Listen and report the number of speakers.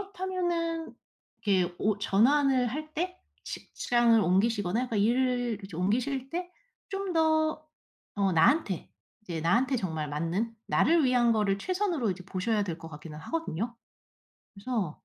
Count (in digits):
1